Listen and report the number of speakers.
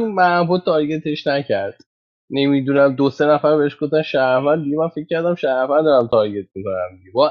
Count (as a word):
one